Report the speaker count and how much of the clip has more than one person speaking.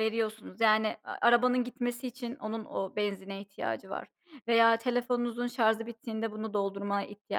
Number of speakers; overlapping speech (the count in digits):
1, no overlap